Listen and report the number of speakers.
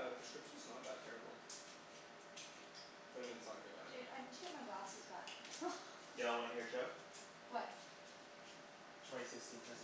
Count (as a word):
three